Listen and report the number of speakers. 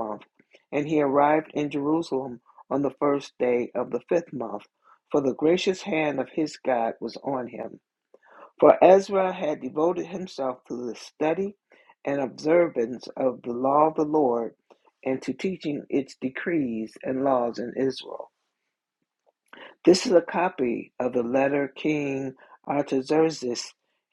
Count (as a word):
one